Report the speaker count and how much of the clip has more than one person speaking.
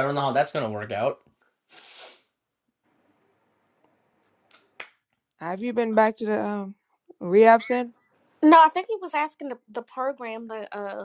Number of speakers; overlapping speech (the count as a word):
three, no overlap